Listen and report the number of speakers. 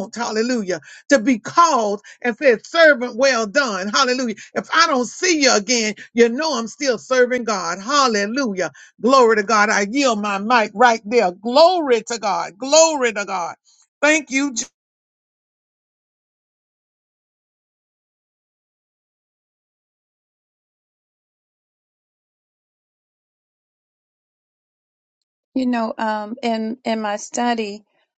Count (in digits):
2